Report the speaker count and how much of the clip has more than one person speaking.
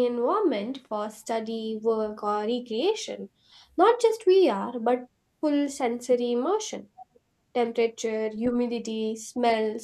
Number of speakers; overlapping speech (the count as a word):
one, no overlap